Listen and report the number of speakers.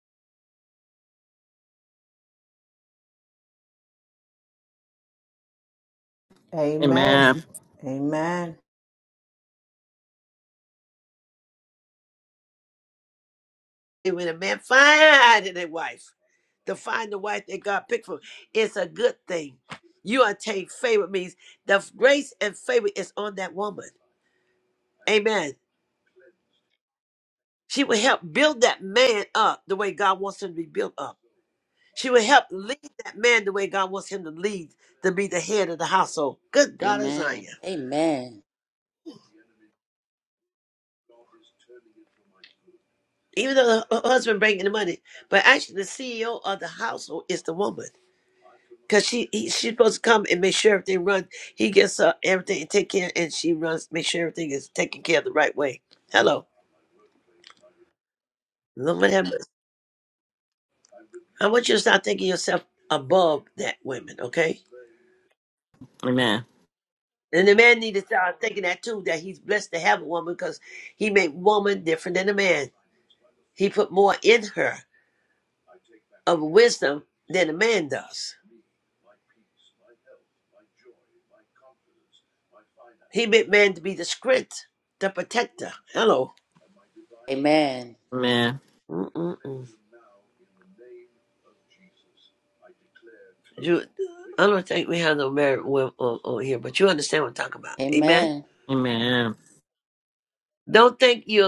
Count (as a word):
four